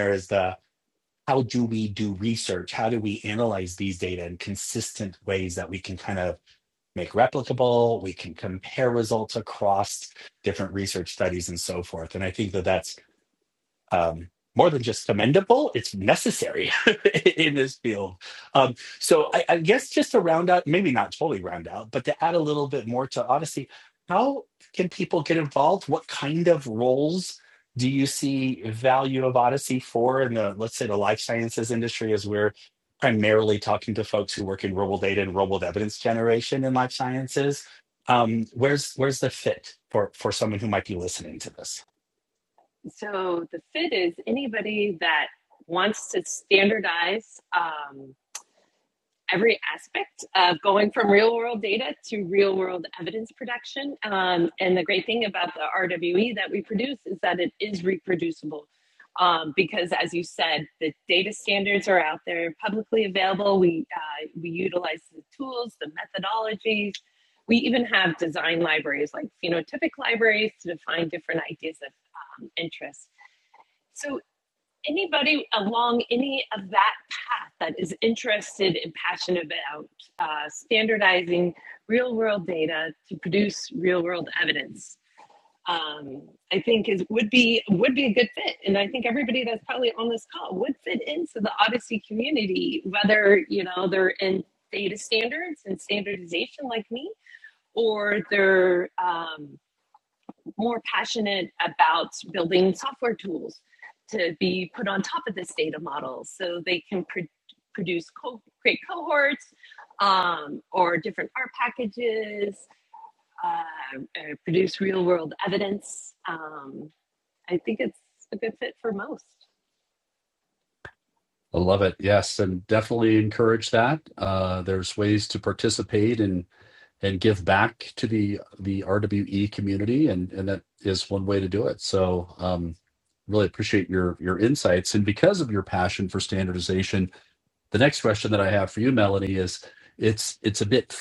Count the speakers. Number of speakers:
3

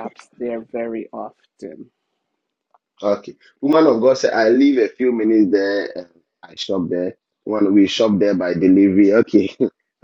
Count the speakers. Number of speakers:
2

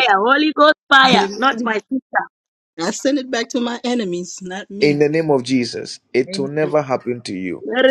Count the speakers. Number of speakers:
3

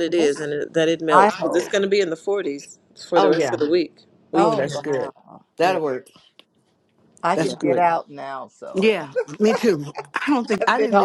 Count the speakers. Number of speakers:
3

